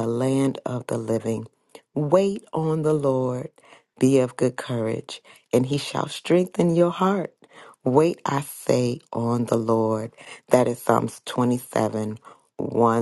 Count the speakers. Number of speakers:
one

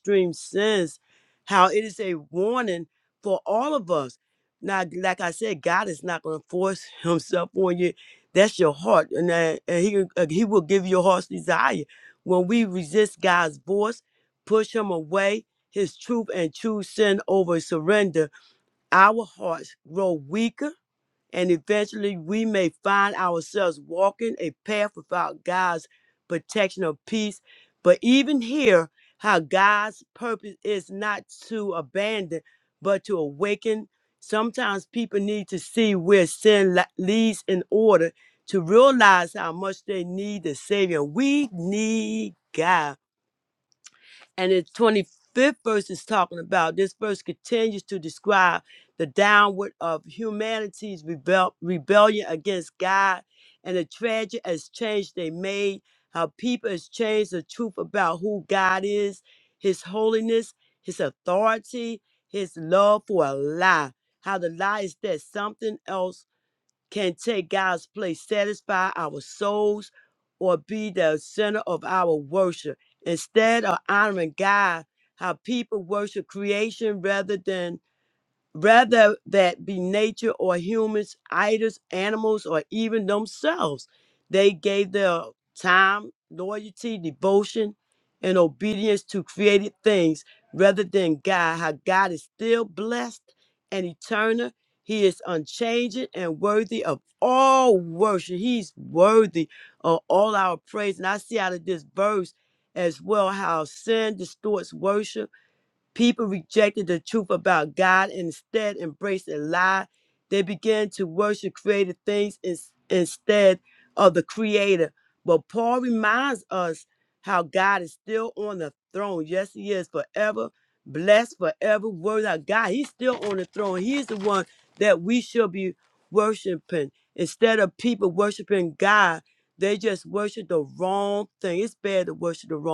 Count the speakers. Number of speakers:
one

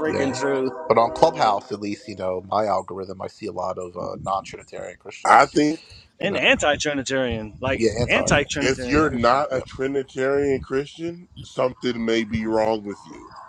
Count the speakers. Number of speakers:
three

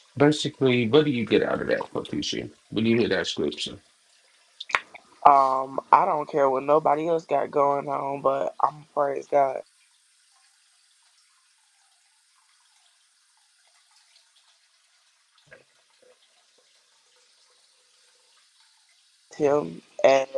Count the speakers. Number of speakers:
two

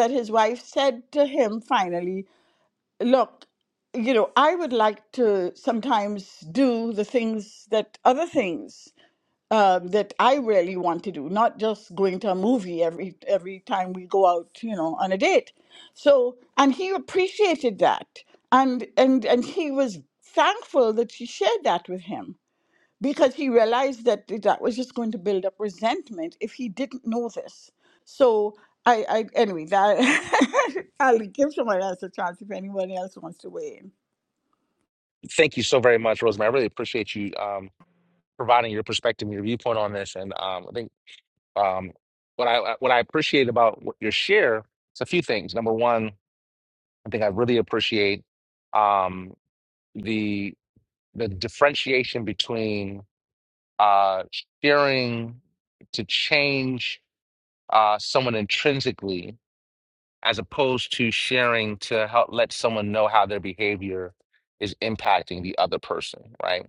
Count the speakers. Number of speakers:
two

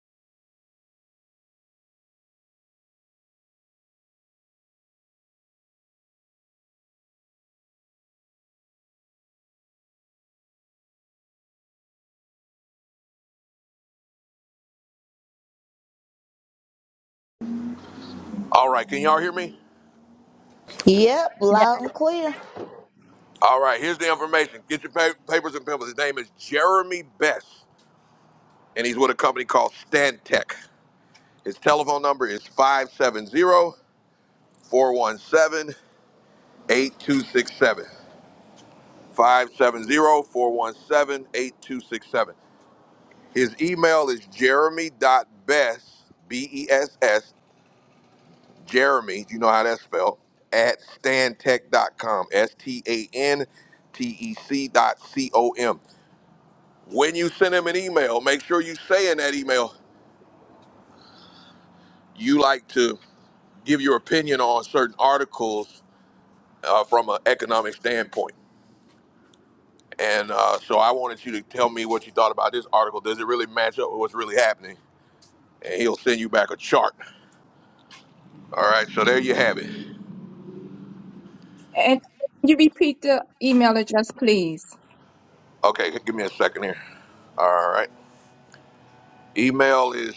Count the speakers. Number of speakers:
three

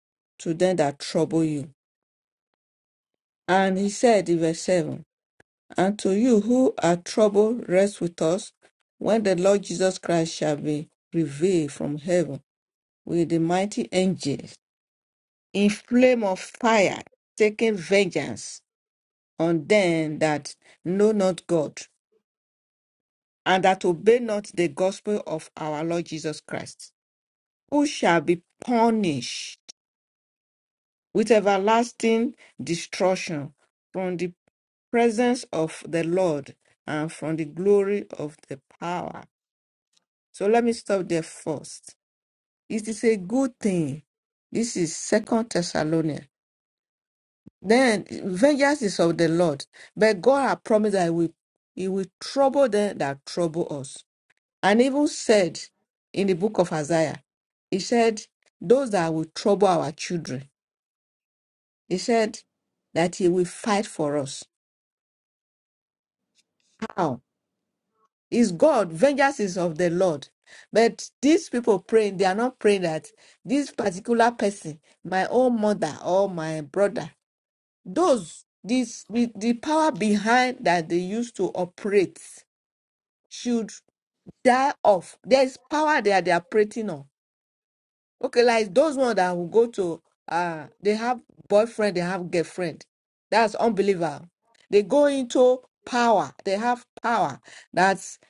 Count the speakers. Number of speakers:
one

